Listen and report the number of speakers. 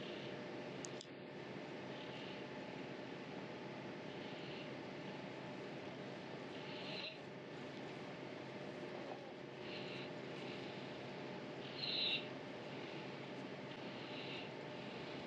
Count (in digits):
0